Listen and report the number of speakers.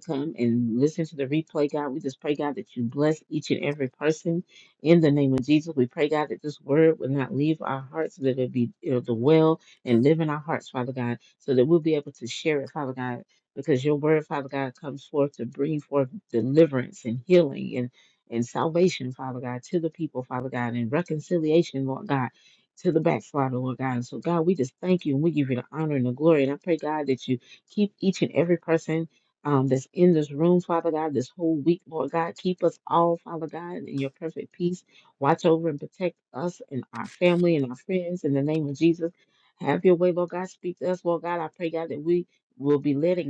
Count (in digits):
1